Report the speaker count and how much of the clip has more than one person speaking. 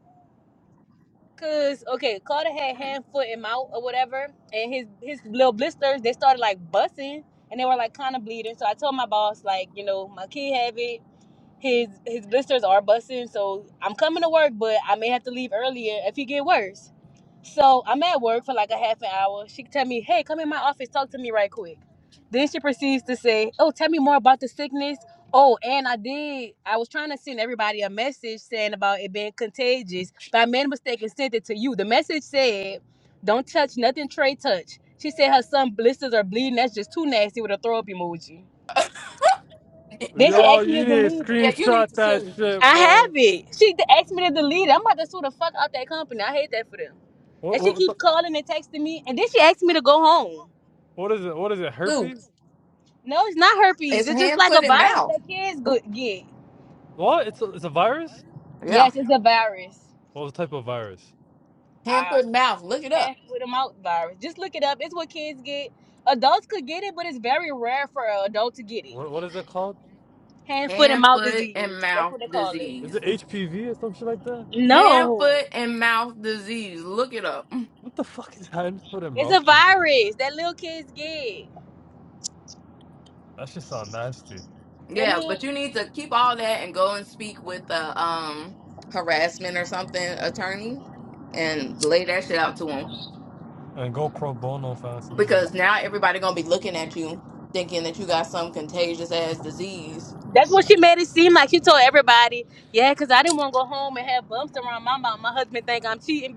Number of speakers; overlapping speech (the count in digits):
3, about 9%